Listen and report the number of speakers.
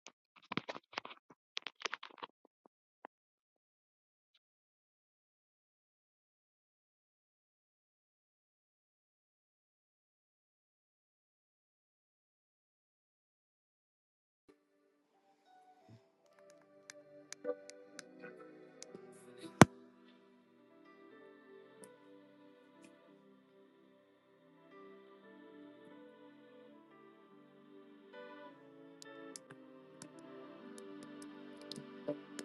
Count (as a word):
zero